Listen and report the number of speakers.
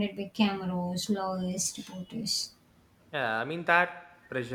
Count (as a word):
two